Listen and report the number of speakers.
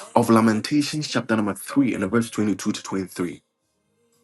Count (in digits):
1